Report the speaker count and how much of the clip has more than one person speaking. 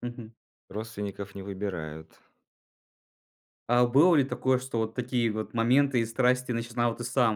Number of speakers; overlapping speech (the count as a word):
two, no overlap